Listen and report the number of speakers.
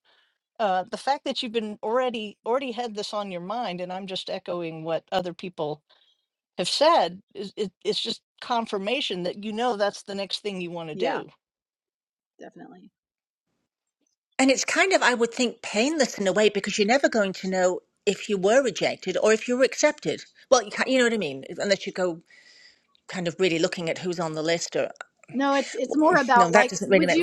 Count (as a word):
three